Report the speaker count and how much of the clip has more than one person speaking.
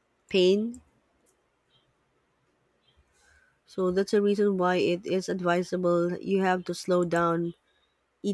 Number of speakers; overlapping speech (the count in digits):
1, no overlap